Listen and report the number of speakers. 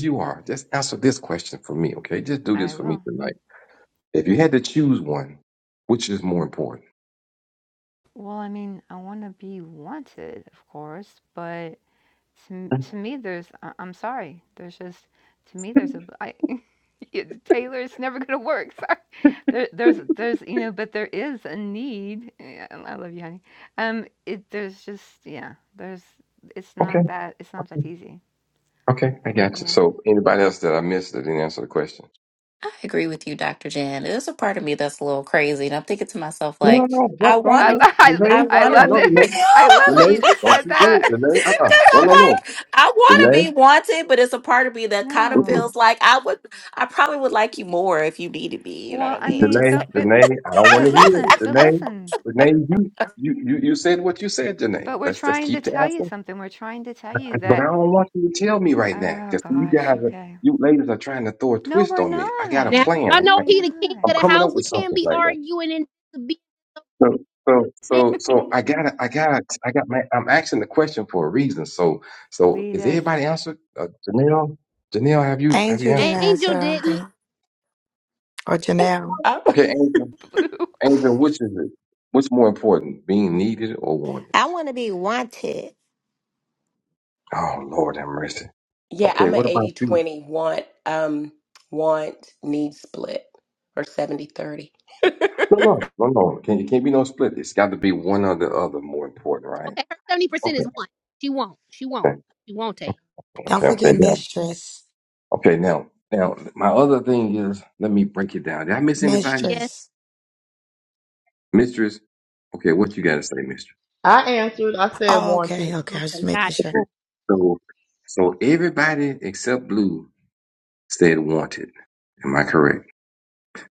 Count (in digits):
8